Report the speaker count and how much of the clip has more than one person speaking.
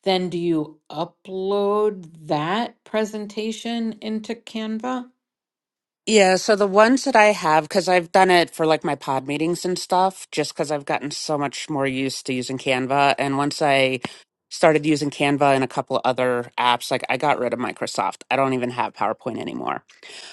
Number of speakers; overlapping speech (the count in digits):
2, no overlap